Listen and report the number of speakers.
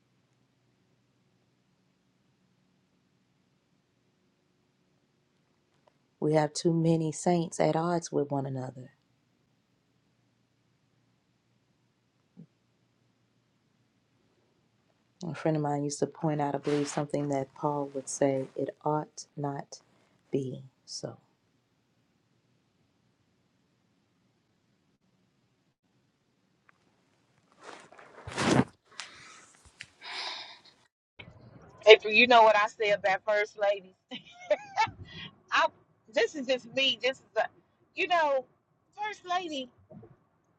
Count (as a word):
two